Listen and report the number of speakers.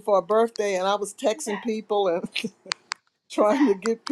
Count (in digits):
1